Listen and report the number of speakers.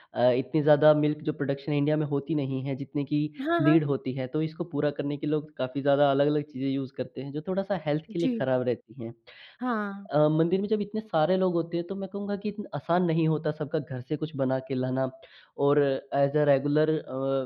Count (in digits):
2